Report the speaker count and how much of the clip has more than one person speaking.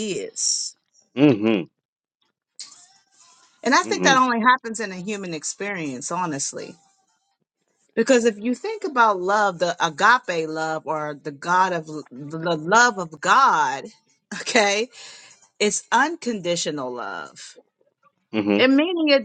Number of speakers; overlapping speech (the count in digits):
2, about 2%